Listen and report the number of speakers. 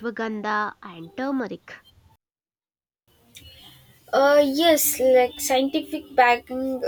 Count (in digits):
2